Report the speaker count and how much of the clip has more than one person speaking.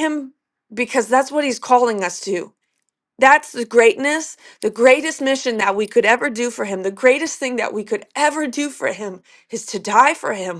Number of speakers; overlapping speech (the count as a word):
one, no overlap